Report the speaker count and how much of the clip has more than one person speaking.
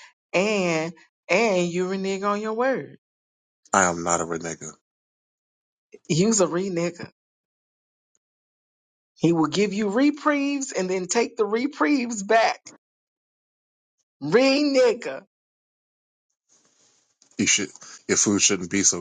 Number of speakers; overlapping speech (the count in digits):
2, no overlap